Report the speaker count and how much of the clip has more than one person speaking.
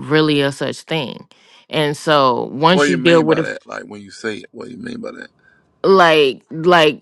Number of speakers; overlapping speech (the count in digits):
2, about 11%